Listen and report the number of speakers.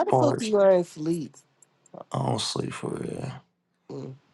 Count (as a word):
two